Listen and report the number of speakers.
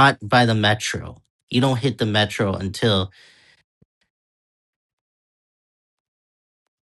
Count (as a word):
one